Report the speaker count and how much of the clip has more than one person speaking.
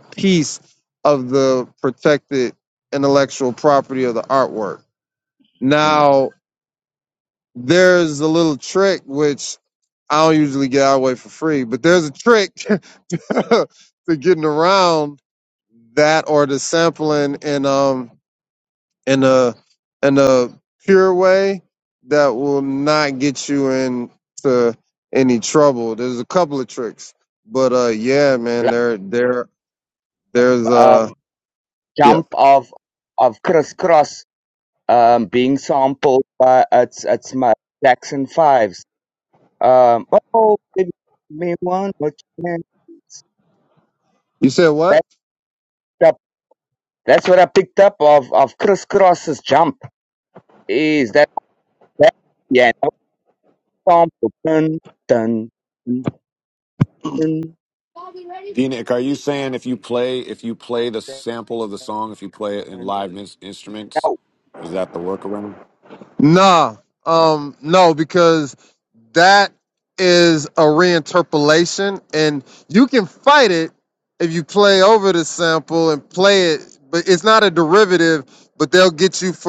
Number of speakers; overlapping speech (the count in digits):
3, about 2%